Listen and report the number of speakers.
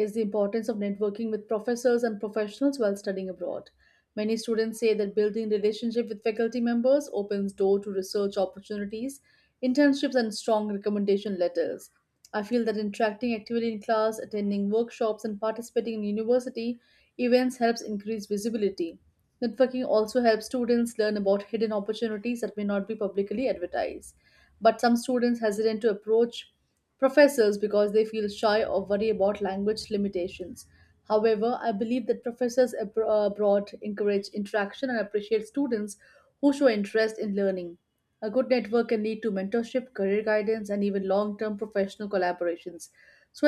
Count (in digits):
1